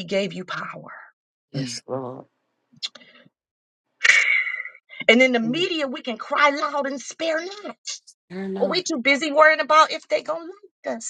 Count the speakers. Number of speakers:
two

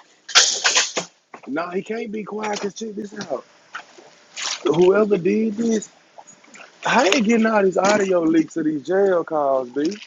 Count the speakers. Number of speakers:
one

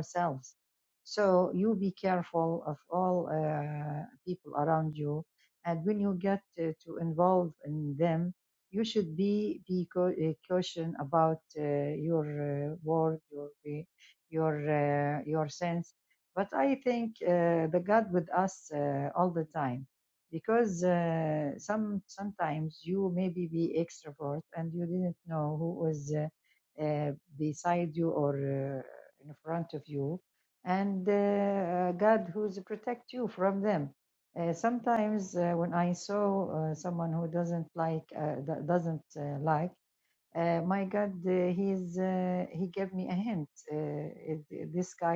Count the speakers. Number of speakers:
one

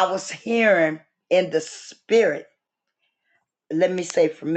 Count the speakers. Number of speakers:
one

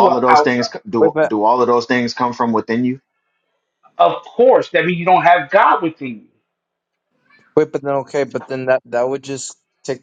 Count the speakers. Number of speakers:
three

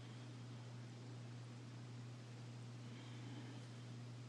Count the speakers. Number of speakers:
zero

